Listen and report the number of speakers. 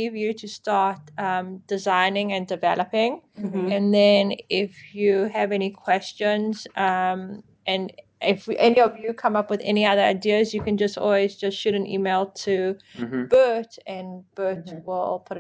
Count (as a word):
one